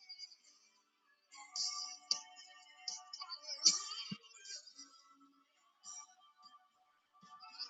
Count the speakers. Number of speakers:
0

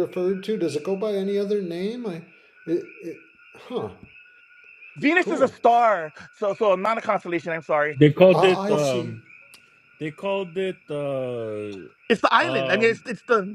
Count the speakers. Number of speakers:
3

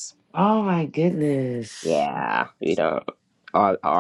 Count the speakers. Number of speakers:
2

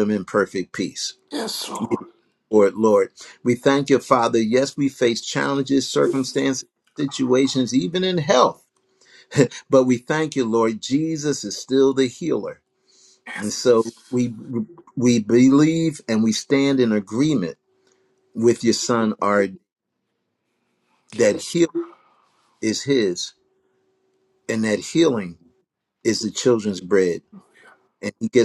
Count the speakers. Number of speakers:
2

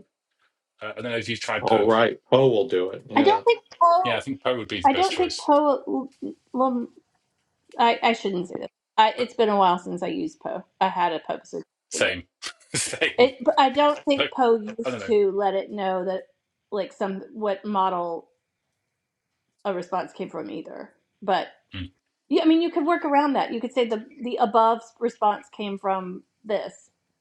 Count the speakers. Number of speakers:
3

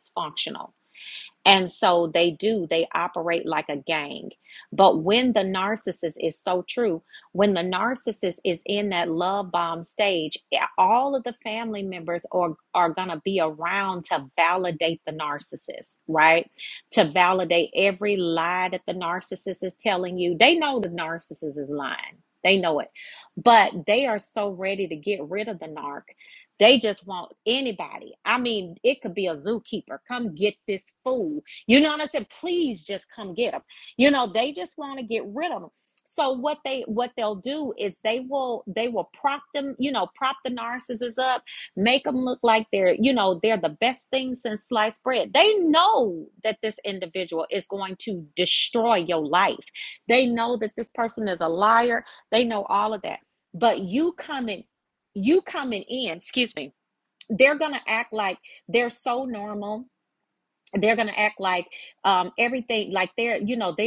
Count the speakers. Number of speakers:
1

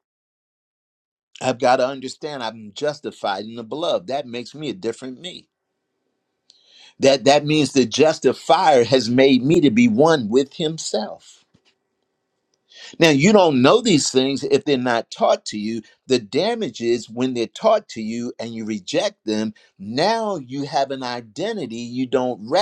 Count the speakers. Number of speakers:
1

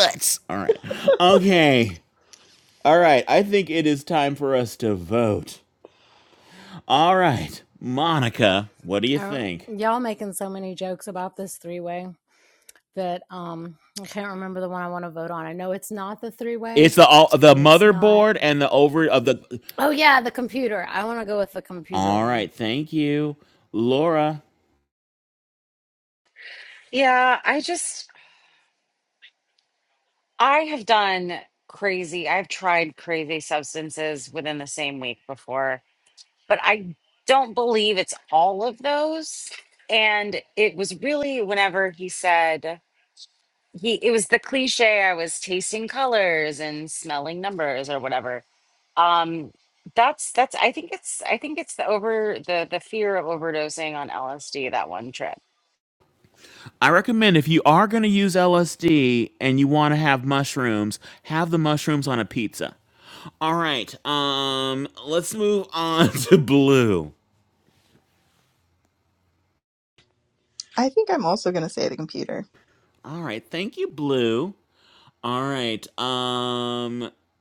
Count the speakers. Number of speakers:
4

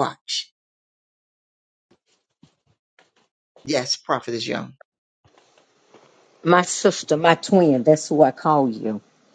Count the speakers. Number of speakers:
2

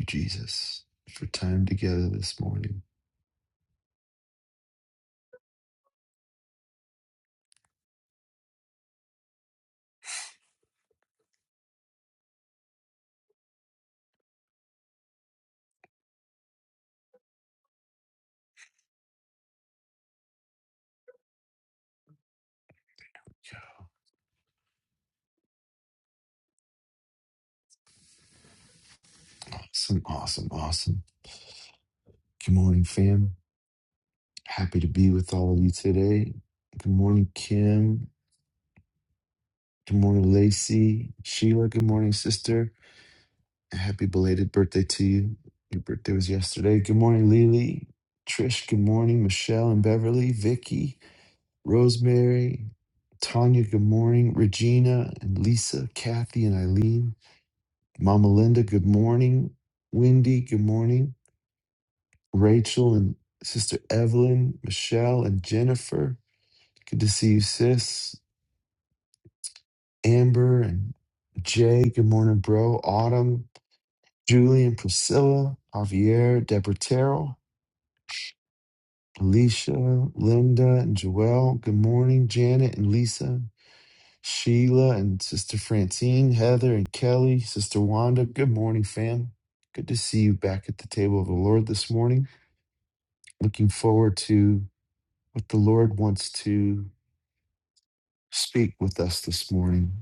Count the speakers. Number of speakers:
1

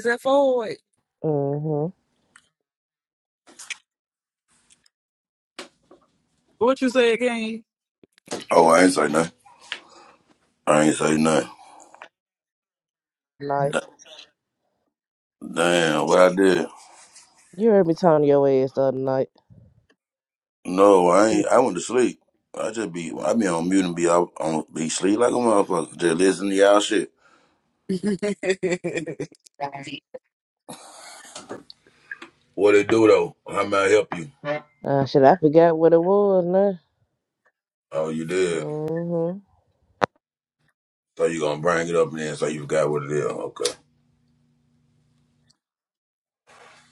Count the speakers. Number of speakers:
3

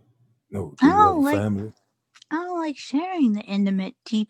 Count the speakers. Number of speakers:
2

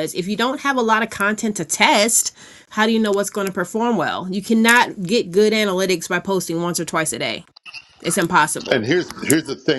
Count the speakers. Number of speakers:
2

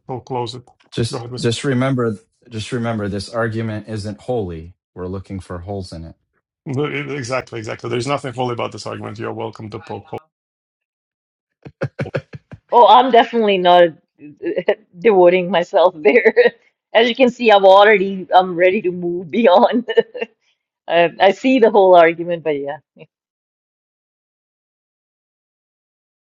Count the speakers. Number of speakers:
3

